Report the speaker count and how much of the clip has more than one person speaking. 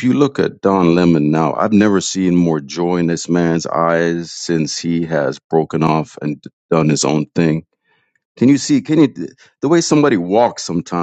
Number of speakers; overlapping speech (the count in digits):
1, no overlap